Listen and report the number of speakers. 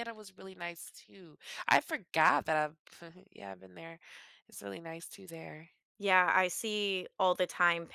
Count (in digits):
2